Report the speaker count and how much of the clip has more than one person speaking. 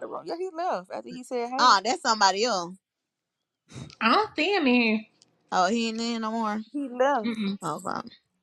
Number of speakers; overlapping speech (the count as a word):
three, about 2%